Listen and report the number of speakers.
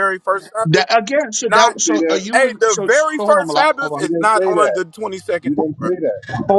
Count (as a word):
three